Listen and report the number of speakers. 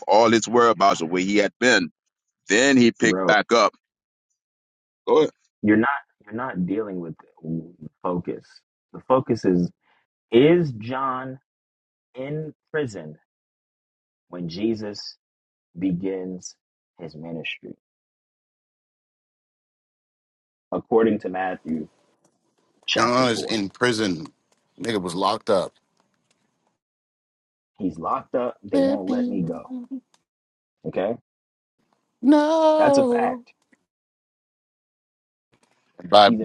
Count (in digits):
3